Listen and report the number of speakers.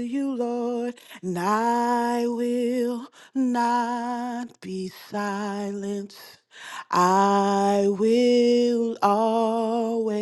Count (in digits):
1